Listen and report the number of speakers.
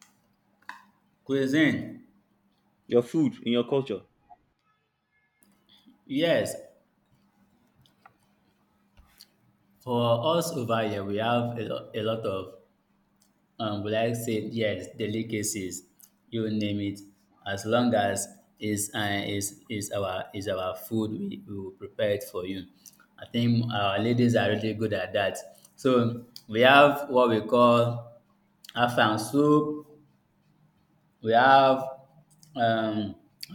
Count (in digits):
2